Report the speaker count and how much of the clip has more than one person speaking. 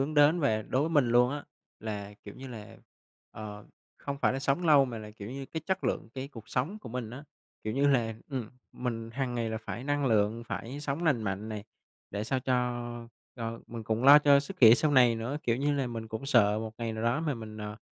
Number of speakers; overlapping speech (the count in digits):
1, no overlap